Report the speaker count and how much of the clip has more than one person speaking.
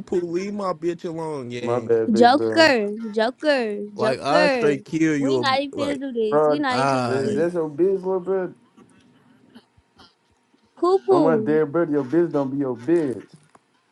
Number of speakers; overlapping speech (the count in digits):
3, about 29%